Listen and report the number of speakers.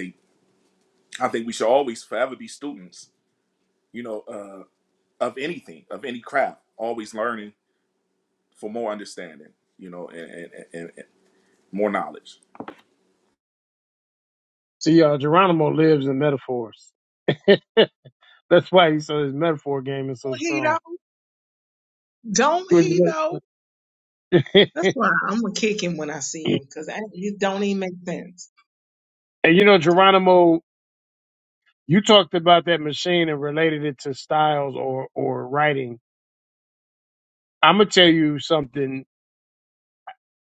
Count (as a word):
three